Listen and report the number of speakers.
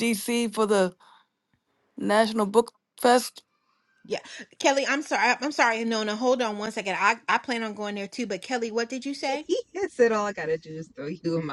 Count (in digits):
3